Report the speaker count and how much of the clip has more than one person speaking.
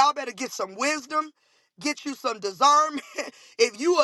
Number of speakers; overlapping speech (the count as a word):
one, no overlap